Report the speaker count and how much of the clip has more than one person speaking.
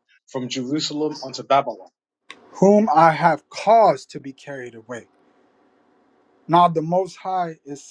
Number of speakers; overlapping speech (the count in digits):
2, no overlap